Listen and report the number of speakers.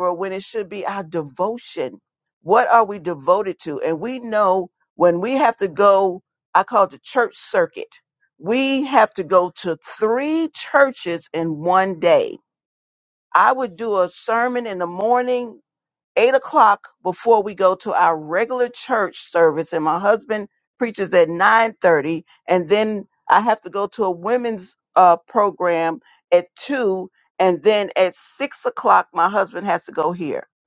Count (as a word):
one